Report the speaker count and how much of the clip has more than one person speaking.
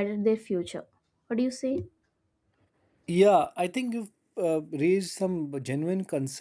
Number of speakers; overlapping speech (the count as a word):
two, no overlap